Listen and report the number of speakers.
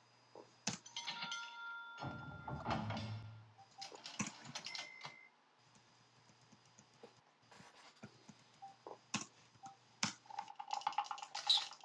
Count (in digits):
0